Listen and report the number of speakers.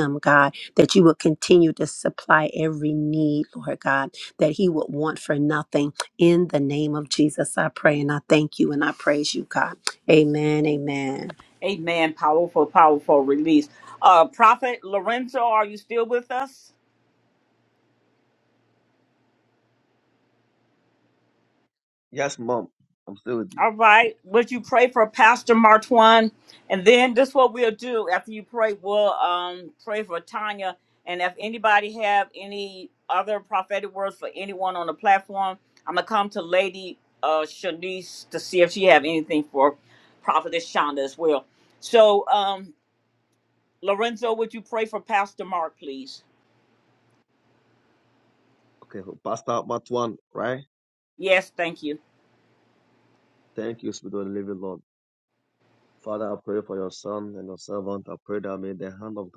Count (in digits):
3